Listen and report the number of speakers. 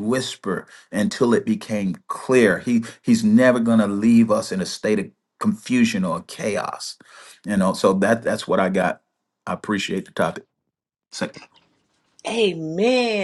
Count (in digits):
2